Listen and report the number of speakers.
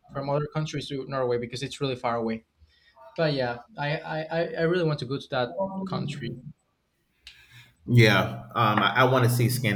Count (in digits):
2